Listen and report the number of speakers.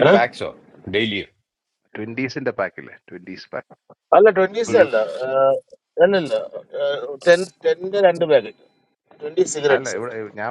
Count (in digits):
3